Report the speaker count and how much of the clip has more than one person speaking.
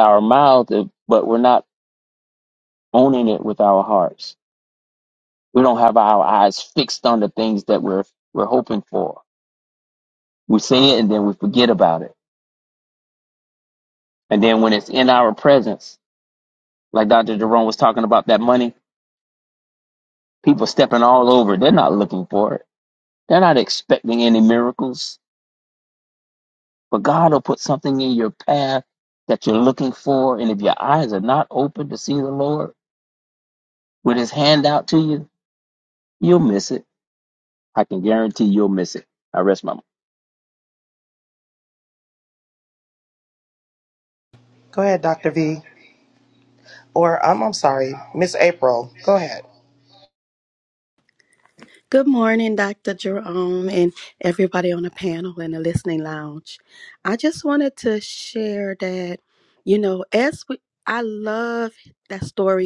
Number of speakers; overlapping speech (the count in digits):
3, no overlap